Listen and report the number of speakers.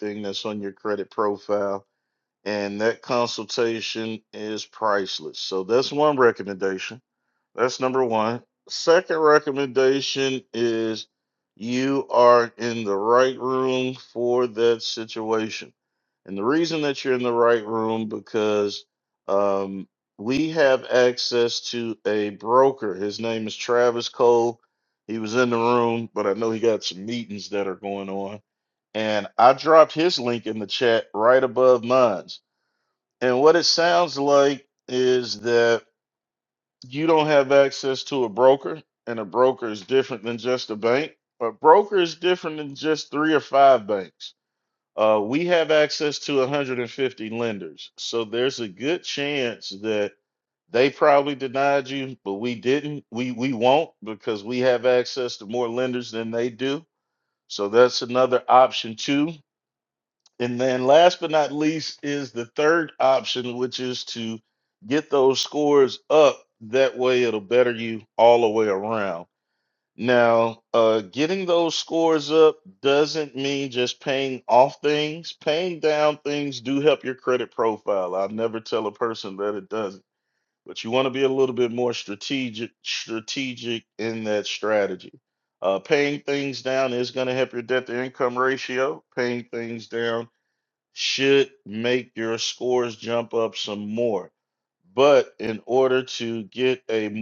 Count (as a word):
one